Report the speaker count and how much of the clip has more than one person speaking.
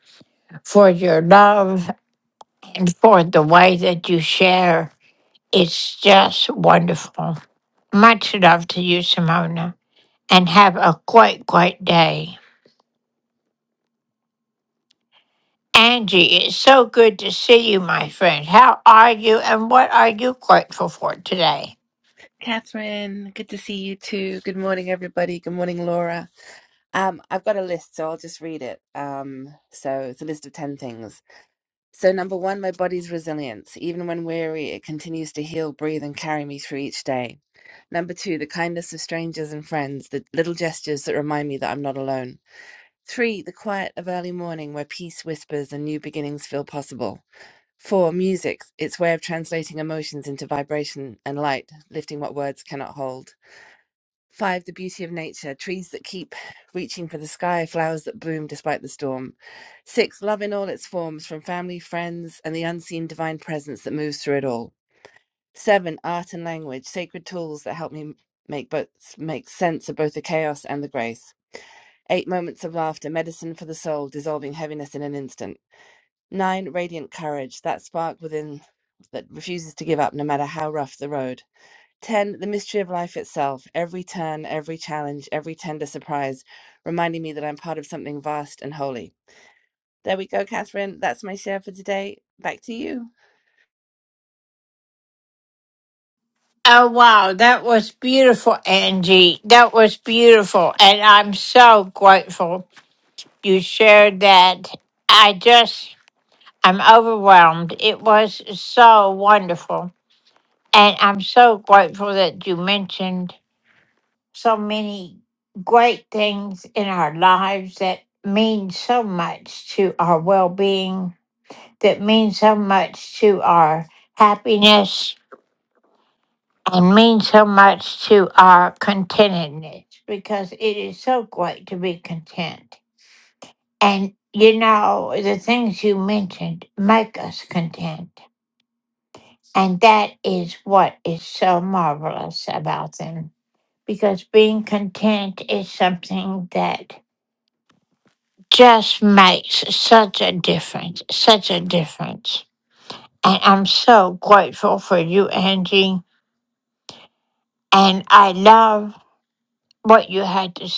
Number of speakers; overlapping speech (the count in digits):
2, no overlap